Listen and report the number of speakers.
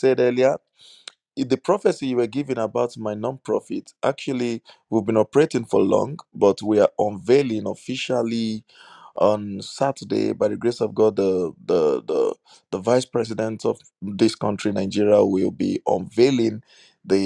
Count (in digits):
1